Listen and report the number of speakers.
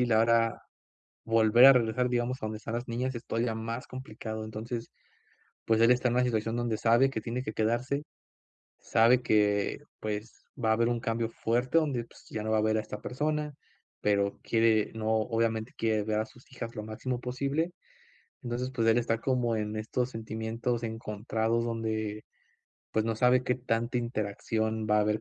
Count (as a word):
one